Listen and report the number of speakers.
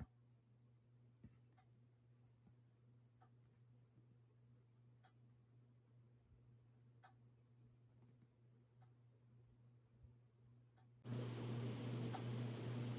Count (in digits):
0